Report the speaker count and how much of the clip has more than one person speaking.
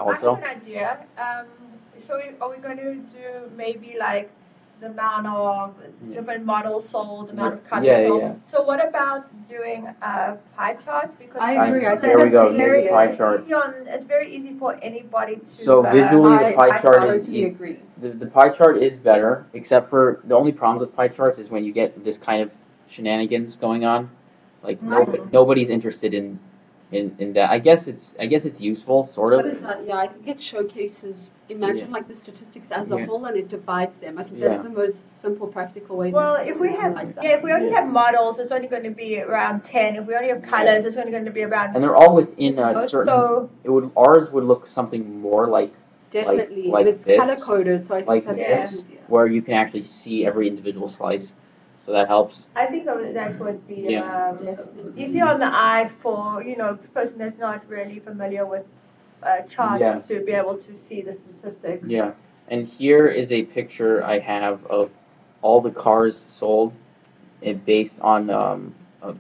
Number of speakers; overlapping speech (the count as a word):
three, about 19%